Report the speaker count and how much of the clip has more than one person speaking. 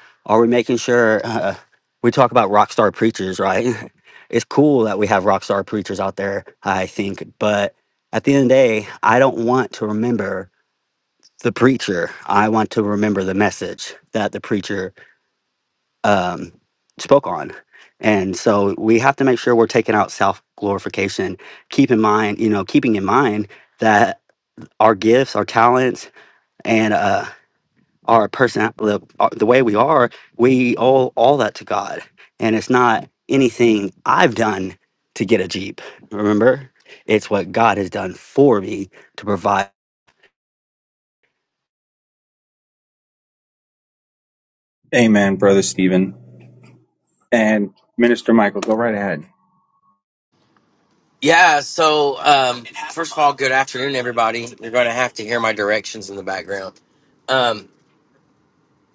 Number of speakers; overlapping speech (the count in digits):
3, no overlap